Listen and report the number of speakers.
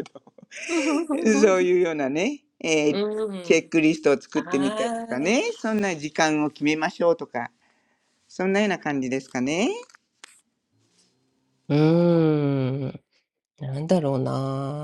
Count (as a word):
two